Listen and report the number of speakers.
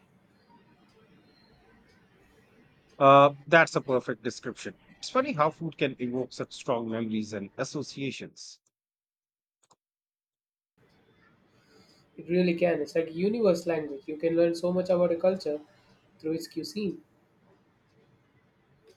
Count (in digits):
2